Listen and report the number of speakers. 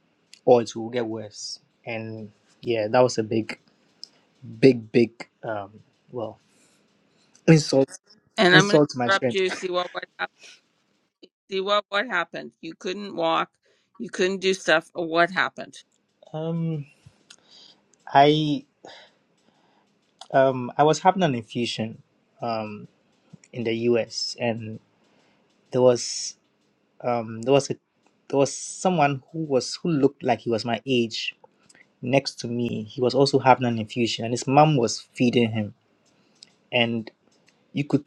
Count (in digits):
2